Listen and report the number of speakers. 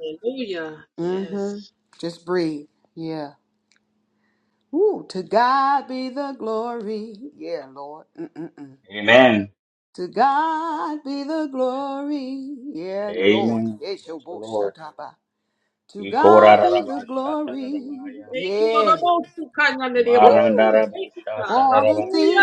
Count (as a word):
three